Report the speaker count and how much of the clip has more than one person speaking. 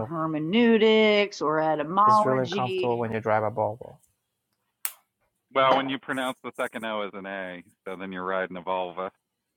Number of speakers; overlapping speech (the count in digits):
3, about 7%